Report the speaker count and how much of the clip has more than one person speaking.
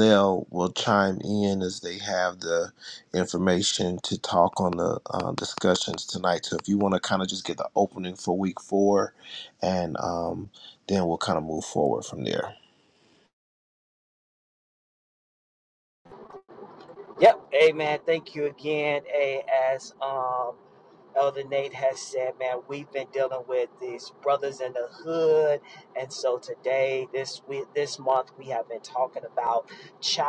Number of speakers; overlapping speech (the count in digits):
2, no overlap